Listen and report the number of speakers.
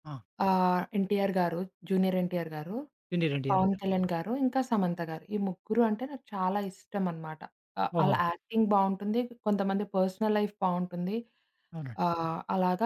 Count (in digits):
2